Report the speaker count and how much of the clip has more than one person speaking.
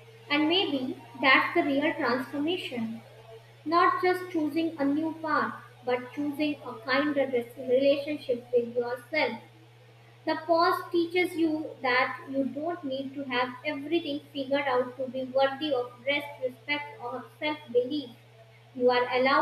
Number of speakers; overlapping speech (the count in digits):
1, no overlap